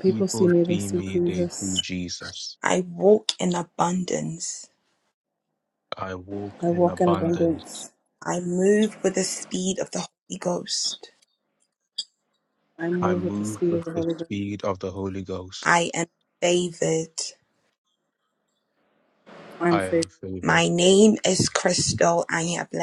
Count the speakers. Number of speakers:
three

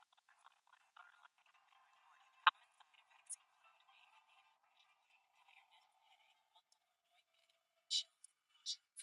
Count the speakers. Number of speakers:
zero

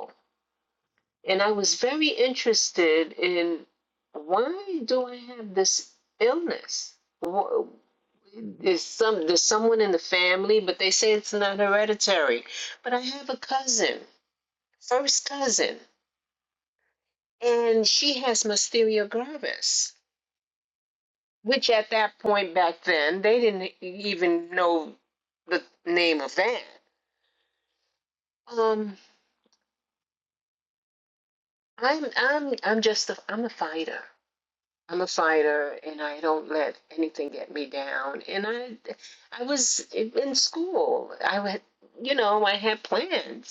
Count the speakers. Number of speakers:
one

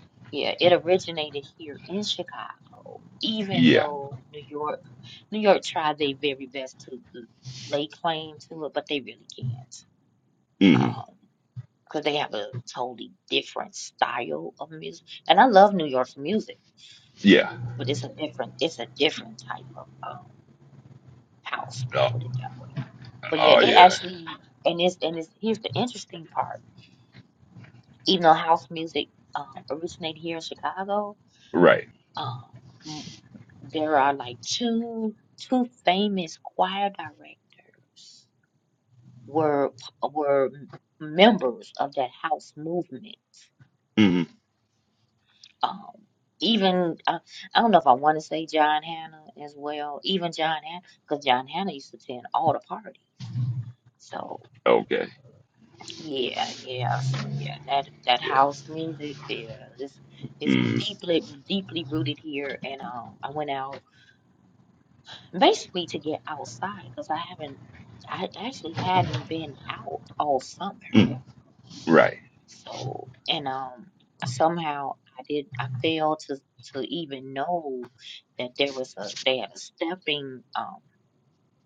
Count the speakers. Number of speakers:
two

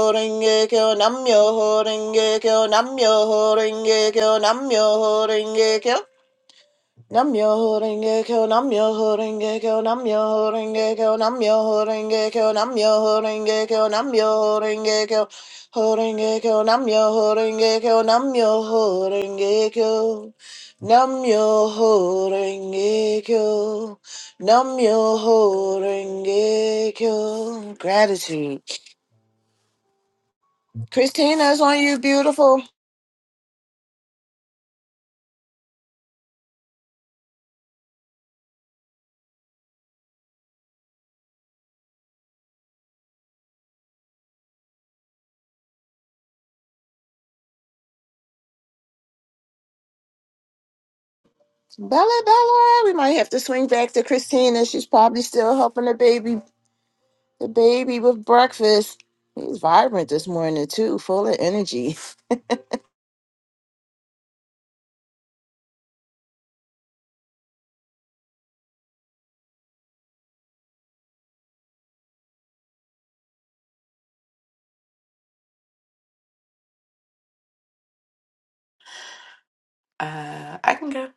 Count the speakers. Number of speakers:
two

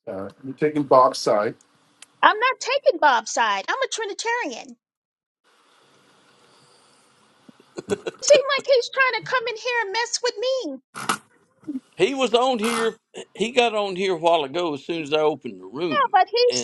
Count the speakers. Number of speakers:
three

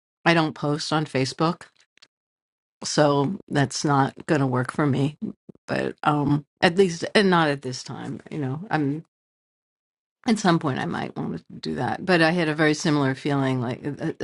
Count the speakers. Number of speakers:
one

